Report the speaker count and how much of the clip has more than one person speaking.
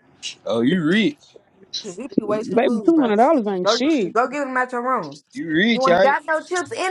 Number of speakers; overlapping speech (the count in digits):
3, about 17%